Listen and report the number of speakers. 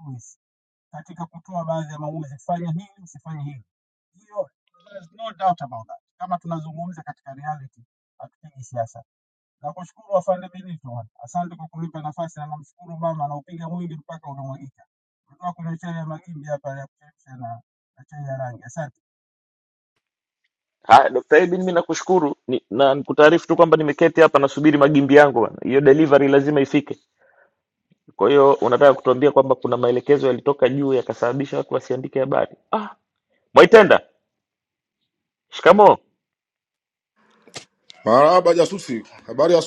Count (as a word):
three